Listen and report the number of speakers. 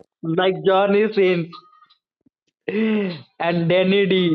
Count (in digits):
1